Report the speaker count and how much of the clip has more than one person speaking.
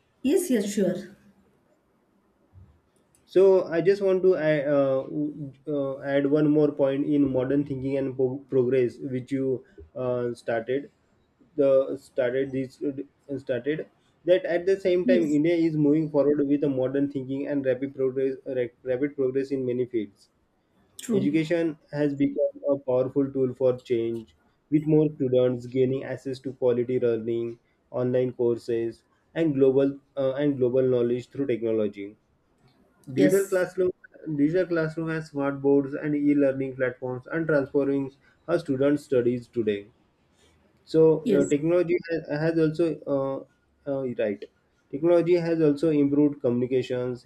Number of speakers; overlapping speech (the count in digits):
2, about 2%